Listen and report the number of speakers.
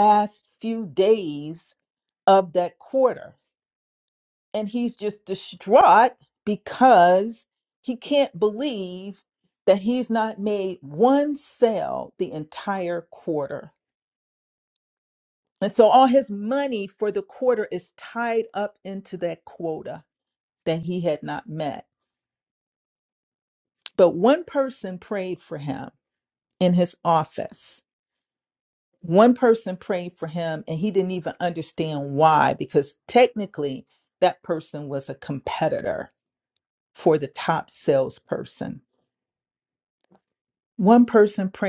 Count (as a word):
one